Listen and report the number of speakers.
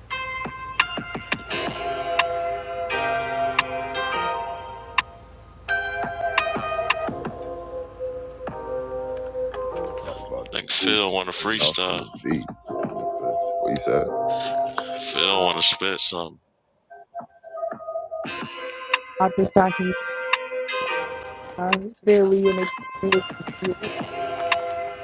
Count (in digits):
3